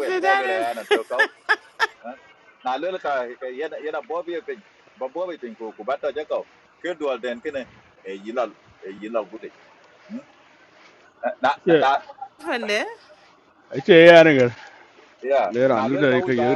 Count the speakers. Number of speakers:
3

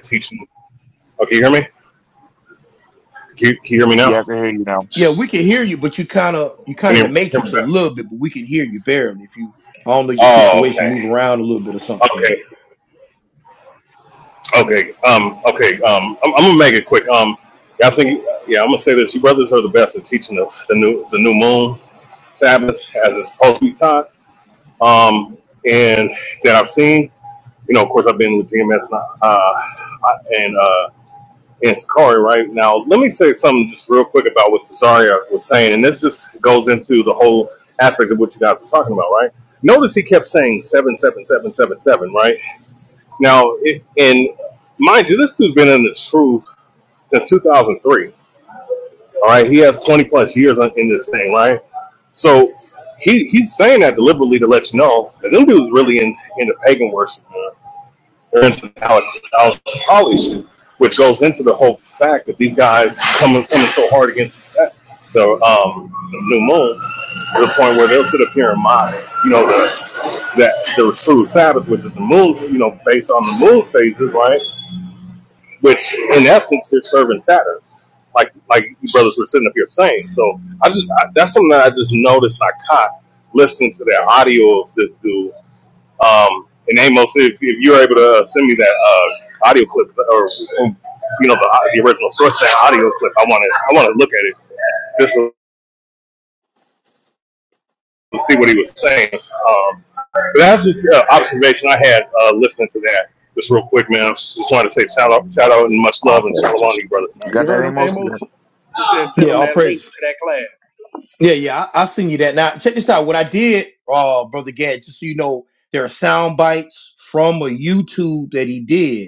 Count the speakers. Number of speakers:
4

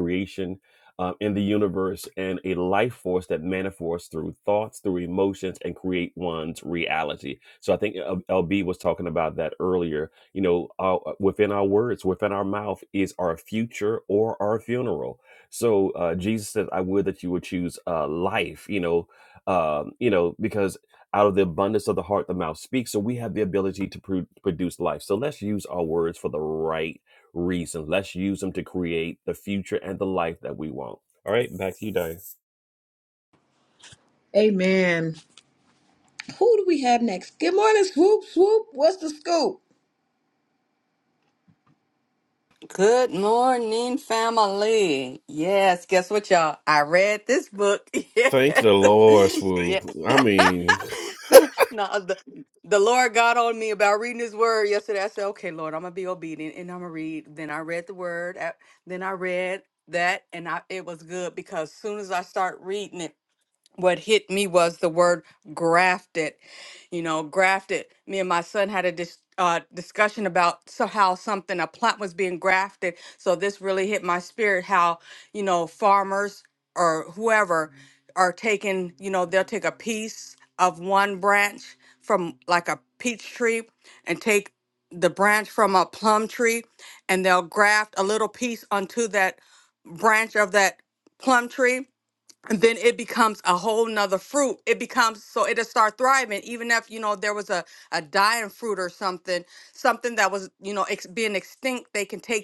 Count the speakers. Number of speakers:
3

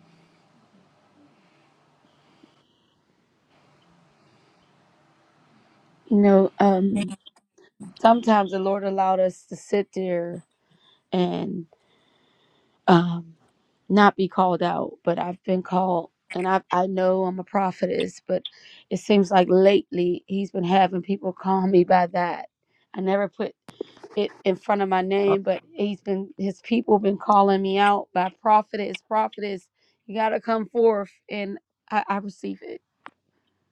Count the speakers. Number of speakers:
1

